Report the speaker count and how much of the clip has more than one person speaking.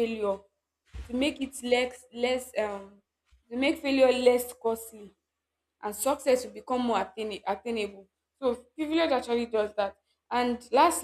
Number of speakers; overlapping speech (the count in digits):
1, no overlap